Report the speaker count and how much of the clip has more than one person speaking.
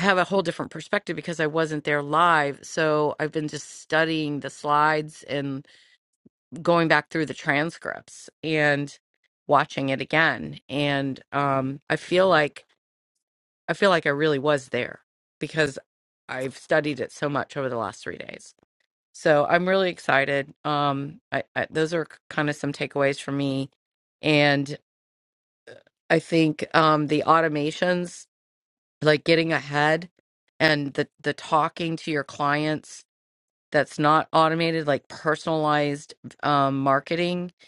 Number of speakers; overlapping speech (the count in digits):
1, no overlap